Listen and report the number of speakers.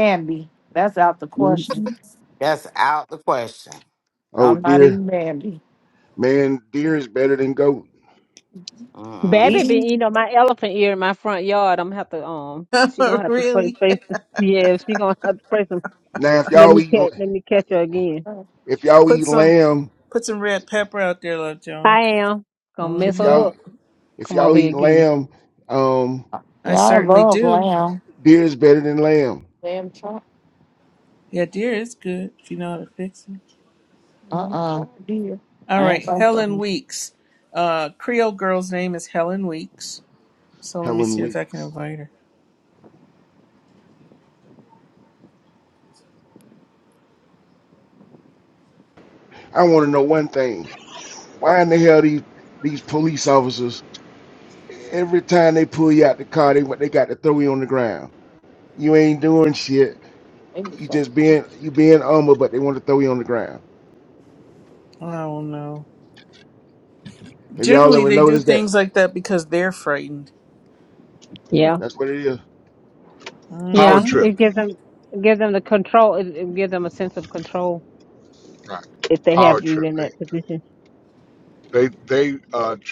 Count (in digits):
6